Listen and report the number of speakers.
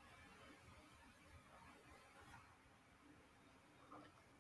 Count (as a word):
zero